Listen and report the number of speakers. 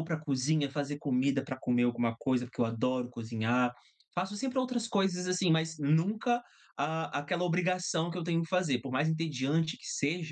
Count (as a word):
one